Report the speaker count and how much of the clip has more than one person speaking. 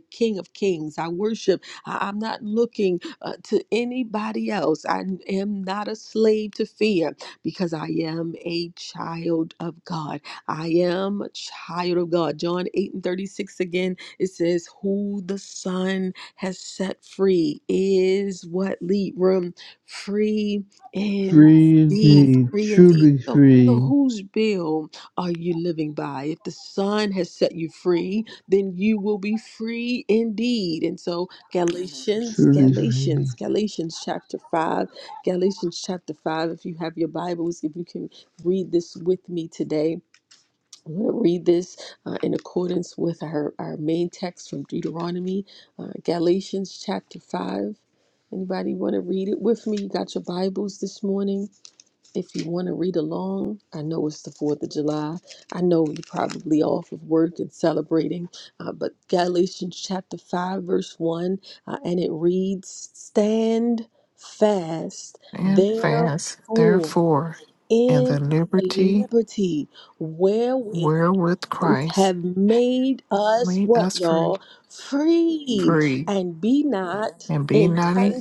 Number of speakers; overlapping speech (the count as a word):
three, about 8%